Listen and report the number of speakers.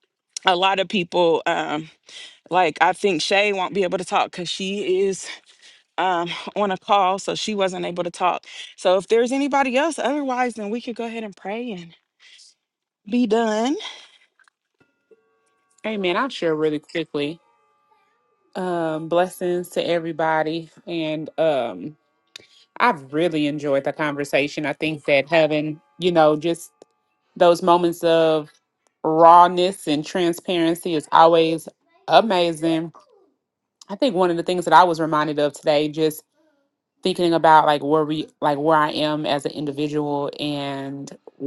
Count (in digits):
2